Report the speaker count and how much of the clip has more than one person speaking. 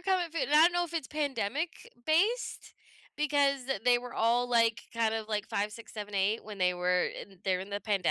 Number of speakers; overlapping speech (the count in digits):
1, no overlap